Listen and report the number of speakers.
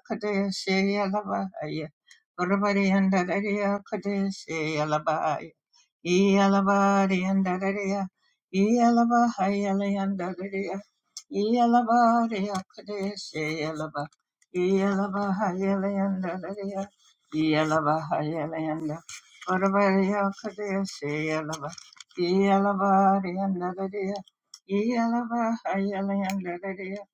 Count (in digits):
1